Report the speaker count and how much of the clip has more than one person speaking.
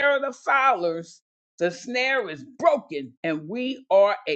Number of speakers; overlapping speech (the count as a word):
one, no overlap